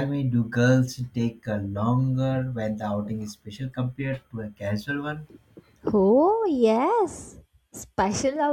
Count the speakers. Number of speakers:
two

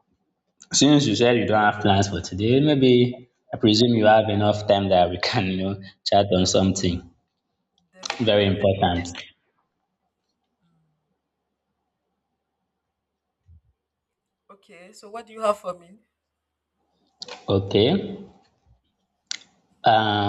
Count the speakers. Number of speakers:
two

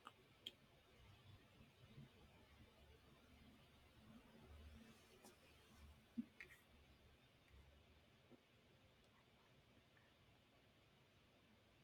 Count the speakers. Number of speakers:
zero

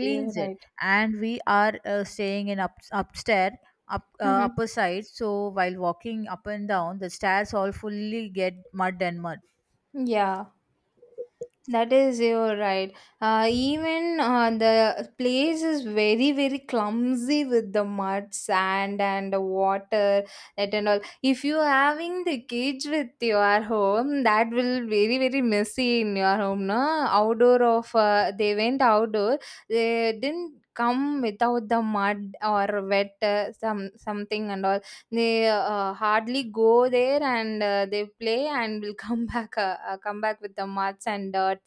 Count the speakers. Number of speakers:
two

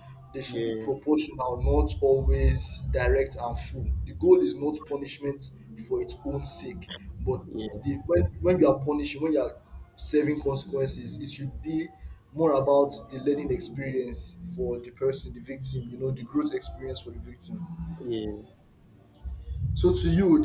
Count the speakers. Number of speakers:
two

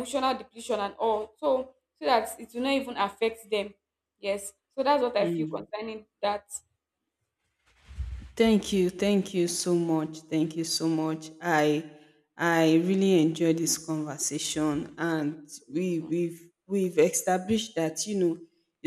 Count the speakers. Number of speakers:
two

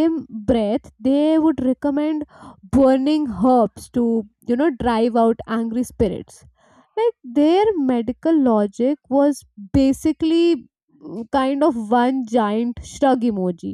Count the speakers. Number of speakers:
one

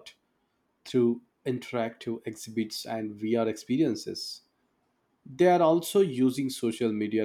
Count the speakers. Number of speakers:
one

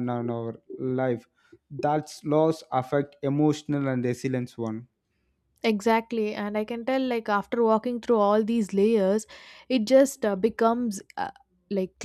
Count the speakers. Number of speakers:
two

